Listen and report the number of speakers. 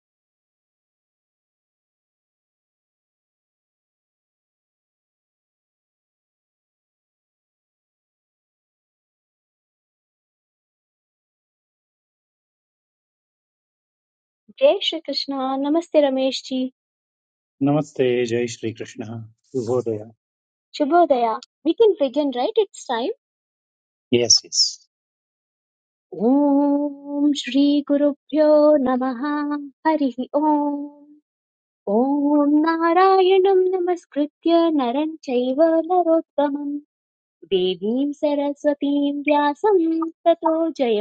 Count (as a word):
two